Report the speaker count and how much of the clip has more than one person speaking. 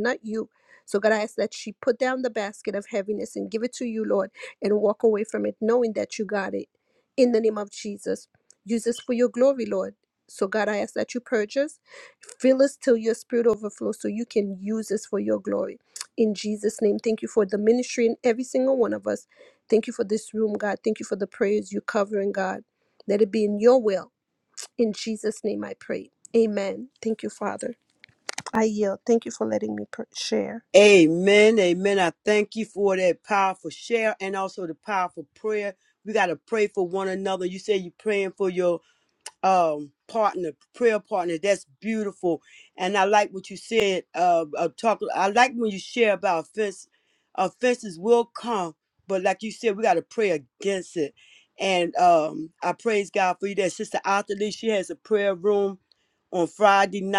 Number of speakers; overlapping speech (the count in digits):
2, no overlap